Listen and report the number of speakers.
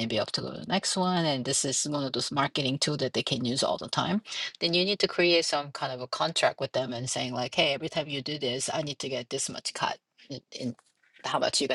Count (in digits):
1